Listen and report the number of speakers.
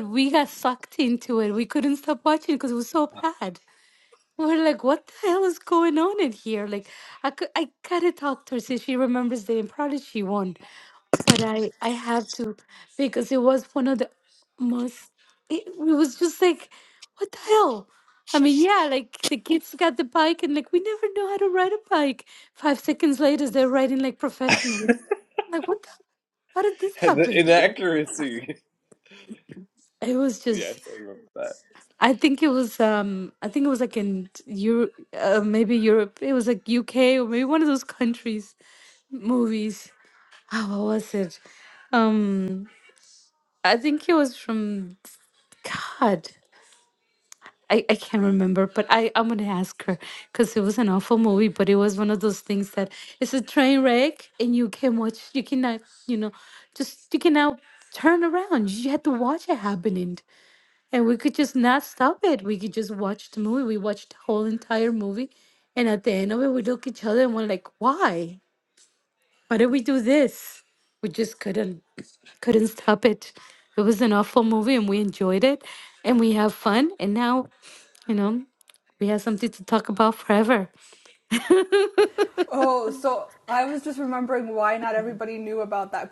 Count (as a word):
three